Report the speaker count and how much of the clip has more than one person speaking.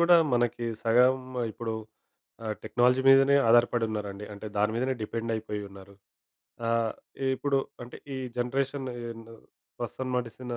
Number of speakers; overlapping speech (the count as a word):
one, no overlap